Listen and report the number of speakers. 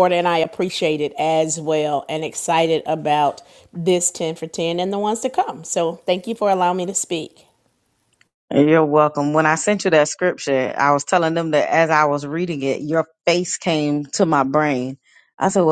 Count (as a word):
two